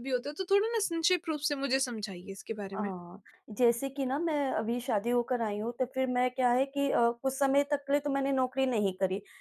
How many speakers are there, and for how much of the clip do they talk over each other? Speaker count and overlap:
2, about 2%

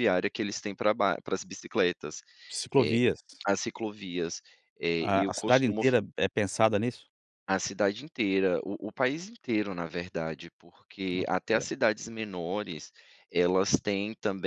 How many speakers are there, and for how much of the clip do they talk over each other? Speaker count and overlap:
2, about 8%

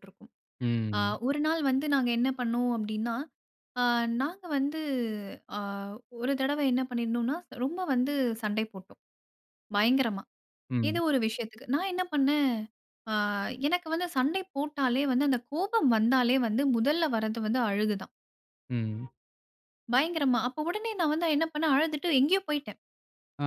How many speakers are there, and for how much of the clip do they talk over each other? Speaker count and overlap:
2, about 2%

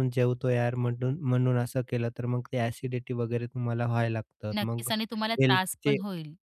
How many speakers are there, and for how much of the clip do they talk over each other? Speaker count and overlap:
2, about 16%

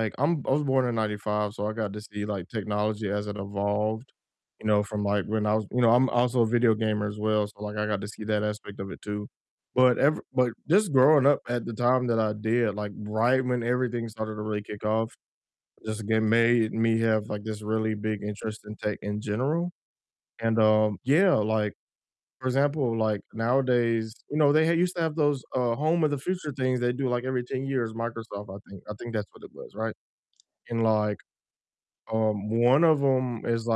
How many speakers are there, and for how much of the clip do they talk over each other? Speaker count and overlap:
1, no overlap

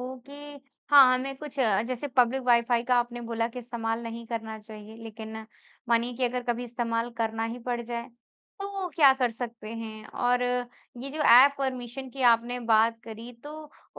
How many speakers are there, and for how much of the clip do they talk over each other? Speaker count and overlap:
1, no overlap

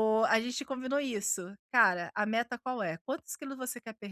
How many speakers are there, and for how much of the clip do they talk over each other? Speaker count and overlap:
1, no overlap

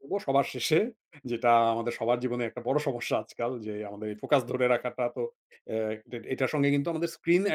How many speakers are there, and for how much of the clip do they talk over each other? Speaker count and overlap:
1, no overlap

